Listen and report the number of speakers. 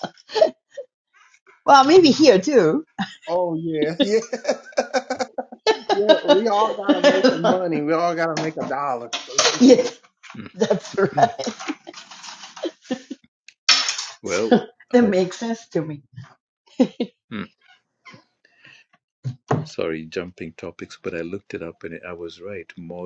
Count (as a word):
three